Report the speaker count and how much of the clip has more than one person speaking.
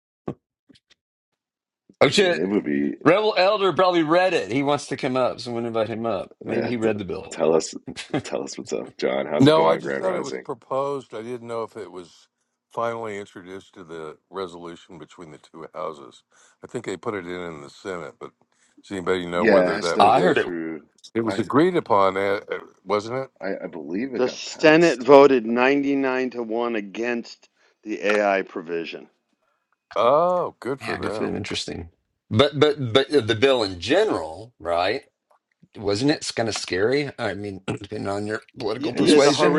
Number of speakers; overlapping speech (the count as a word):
four, about 14%